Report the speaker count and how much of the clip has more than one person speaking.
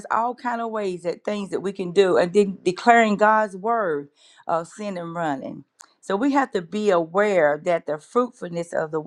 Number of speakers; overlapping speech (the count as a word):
one, no overlap